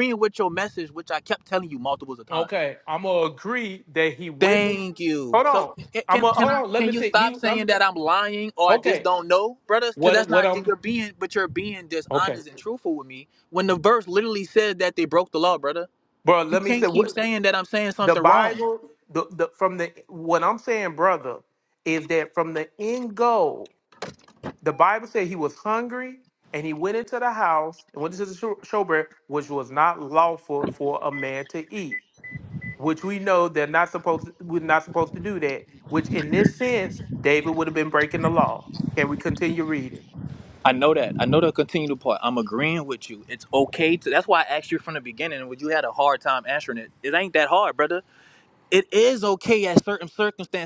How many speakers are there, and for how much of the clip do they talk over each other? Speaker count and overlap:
two, about 10%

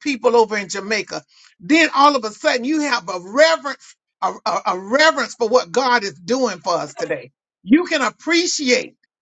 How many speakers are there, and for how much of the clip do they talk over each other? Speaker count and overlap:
one, no overlap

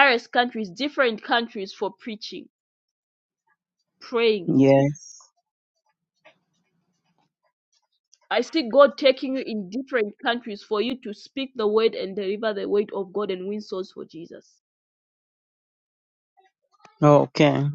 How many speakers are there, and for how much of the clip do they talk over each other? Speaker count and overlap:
two, no overlap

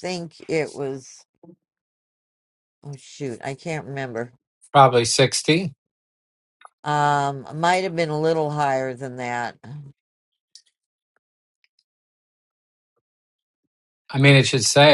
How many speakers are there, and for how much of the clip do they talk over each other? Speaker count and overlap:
two, no overlap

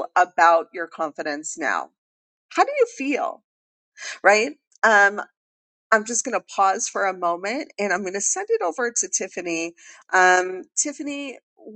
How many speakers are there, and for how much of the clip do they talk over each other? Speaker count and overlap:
one, no overlap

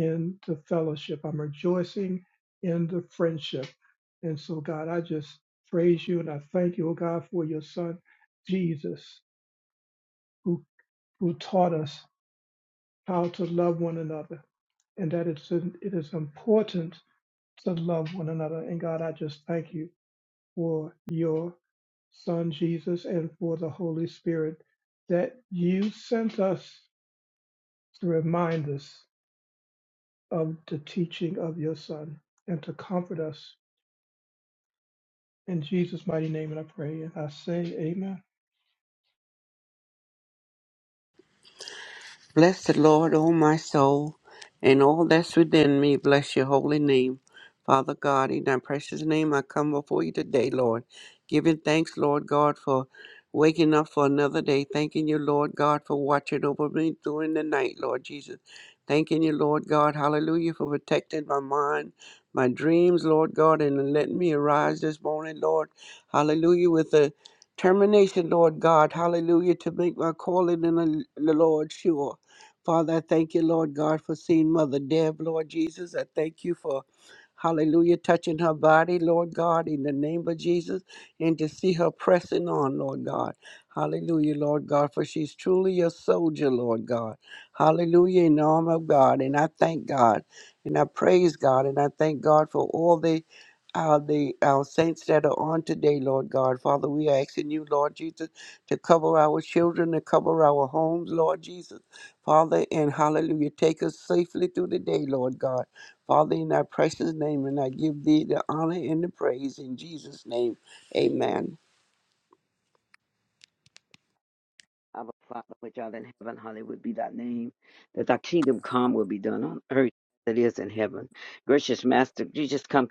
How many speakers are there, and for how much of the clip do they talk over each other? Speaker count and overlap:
three, no overlap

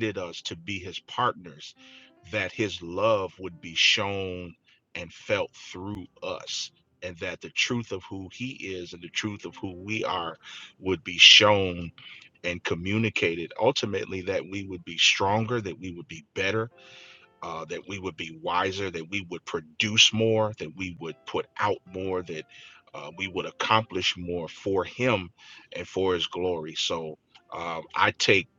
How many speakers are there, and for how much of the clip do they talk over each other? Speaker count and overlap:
one, no overlap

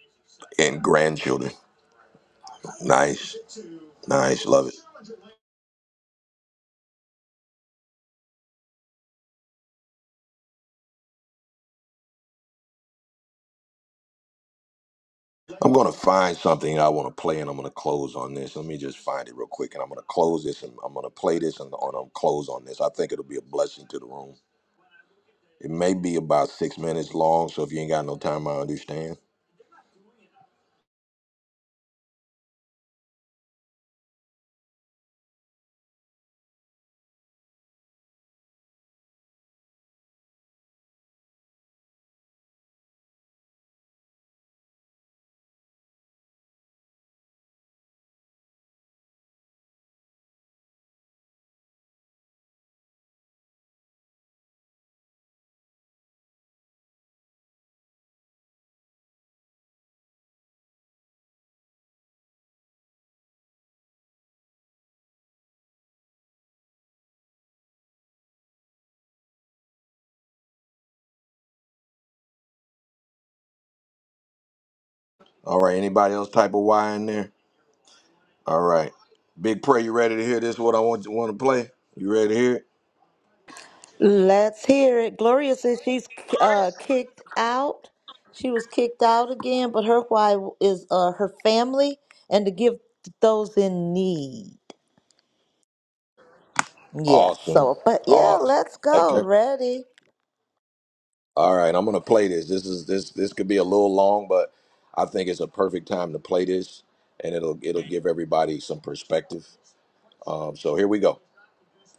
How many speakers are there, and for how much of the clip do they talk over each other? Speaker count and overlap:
two, about 1%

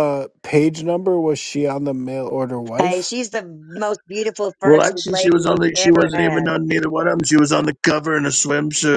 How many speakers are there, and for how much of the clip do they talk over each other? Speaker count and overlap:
three, about 24%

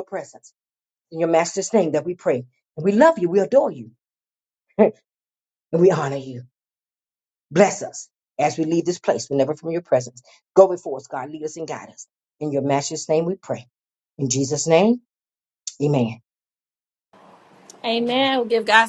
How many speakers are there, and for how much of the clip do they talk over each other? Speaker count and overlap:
two, under 1%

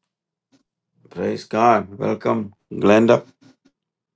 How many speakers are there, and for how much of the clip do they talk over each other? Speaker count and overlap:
one, no overlap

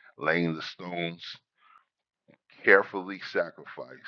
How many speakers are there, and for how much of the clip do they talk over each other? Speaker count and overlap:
one, no overlap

